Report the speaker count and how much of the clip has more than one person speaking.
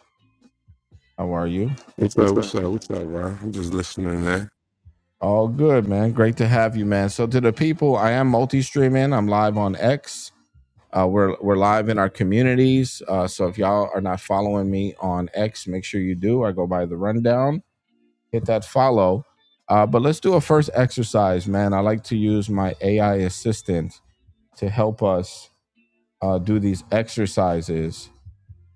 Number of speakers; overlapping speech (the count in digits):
2, no overlap